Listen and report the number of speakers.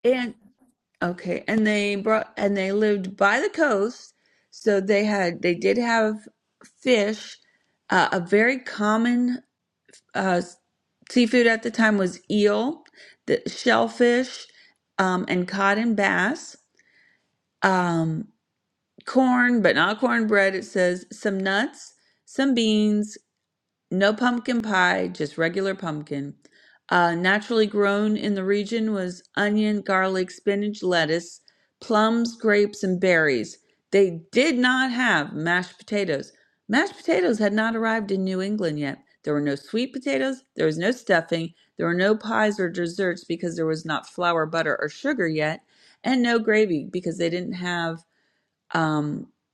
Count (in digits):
1